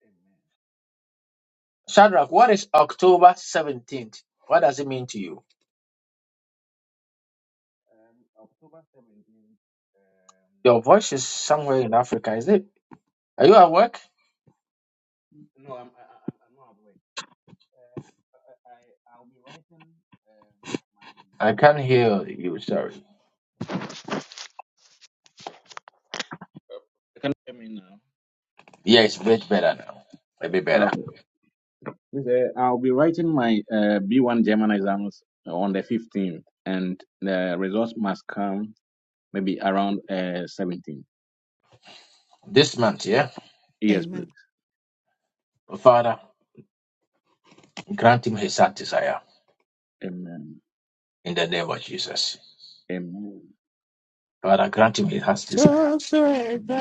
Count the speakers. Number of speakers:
three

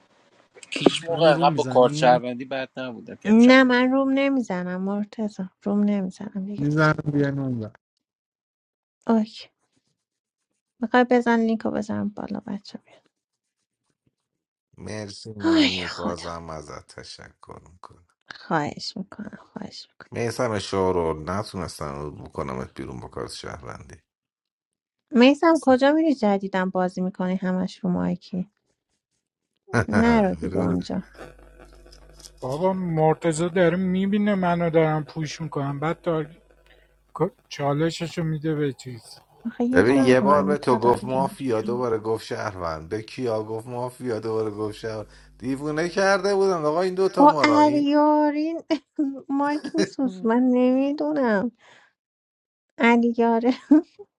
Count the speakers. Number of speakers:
five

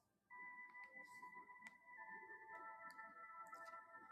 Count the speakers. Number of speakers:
zero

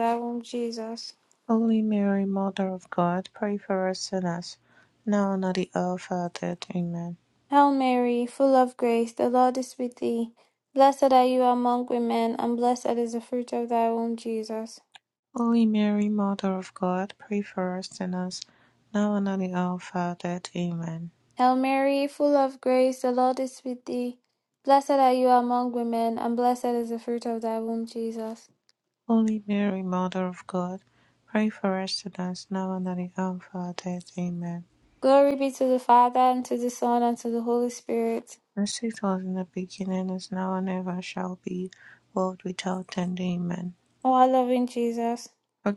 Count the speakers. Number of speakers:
two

